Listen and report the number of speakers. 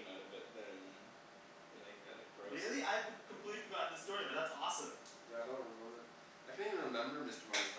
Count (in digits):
3